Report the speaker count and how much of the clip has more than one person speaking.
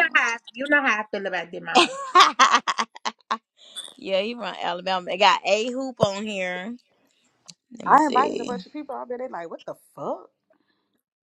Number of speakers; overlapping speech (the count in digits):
3, about 6%